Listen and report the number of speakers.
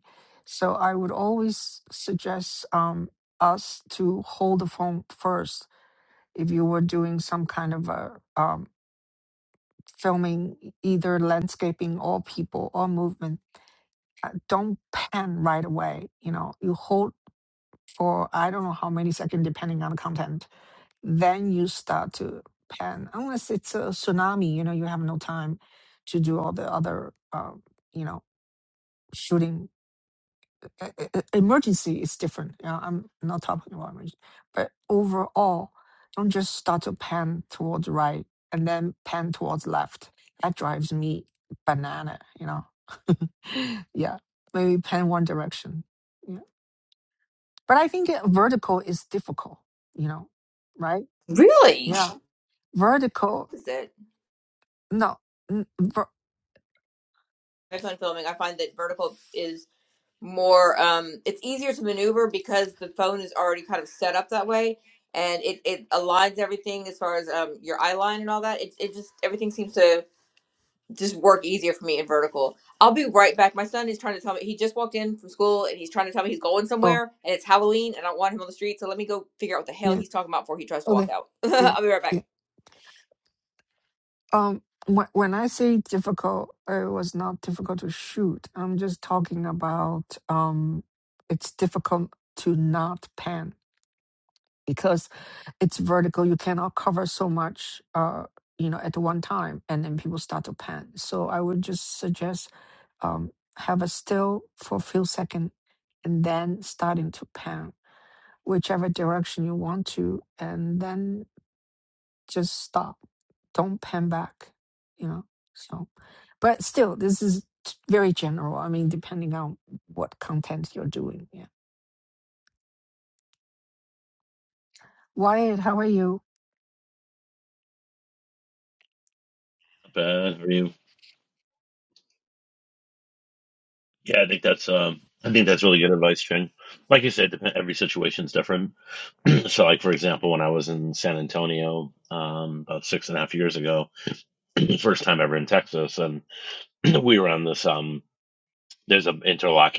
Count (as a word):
three